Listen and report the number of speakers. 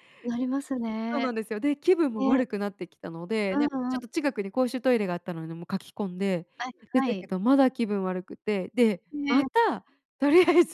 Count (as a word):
two